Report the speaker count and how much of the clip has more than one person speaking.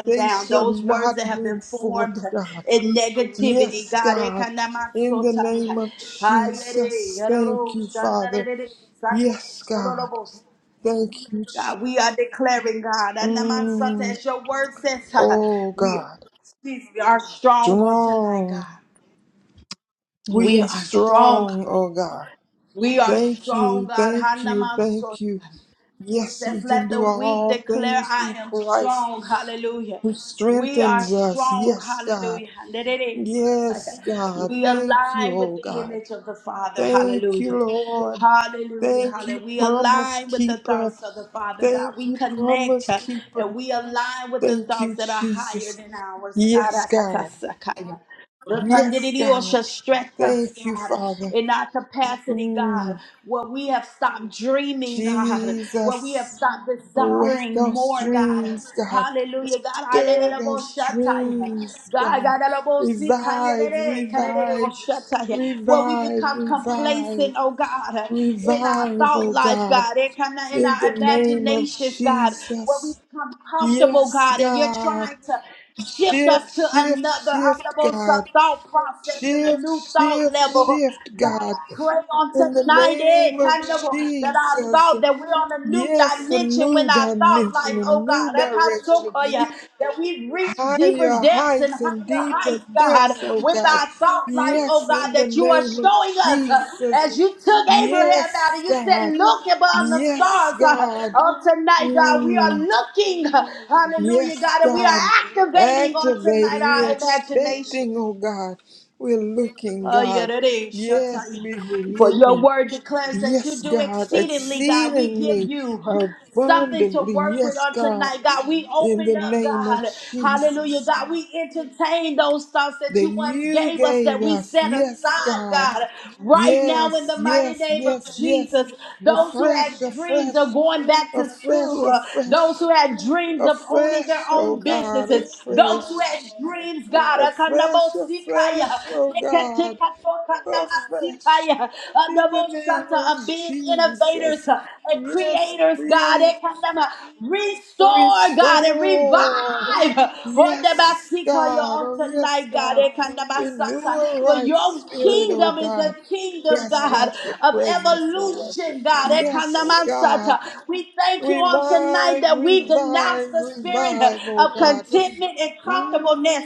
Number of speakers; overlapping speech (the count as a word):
two, about 57%